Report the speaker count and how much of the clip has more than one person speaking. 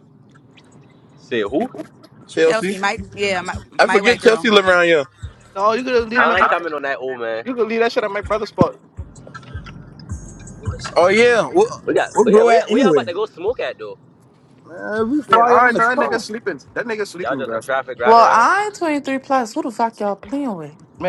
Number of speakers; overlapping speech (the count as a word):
five, about 19%